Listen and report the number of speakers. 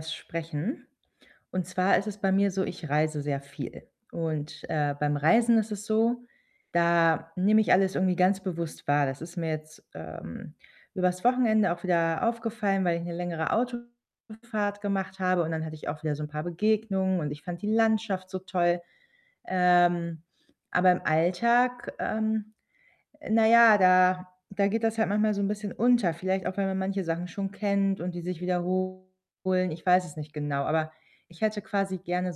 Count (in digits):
1